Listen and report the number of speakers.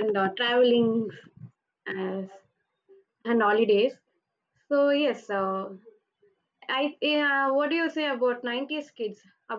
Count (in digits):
1